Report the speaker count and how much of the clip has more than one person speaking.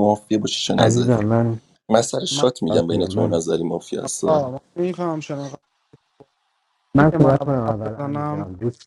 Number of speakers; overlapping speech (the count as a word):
three, about 33%